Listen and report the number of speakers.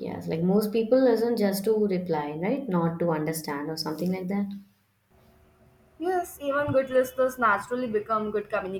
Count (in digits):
2